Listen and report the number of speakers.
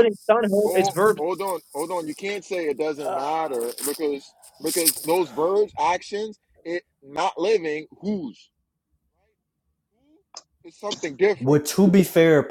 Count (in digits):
3